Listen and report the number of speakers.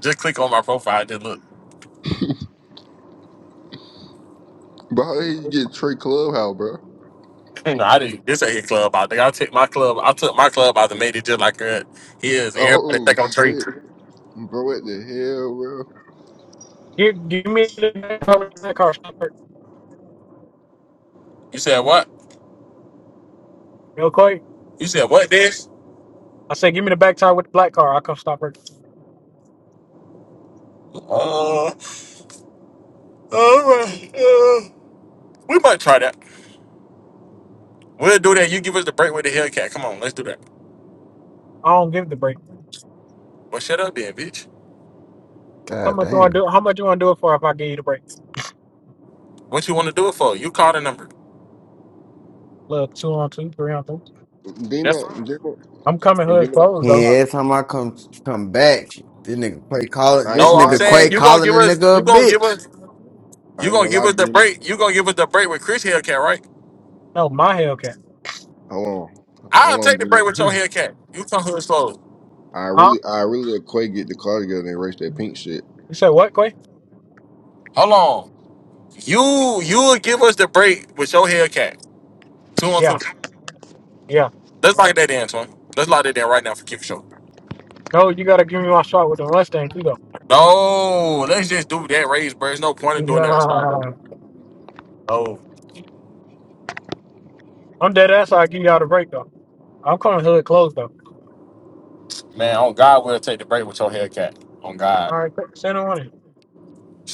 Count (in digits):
4